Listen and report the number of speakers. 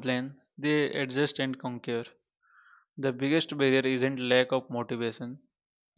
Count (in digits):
1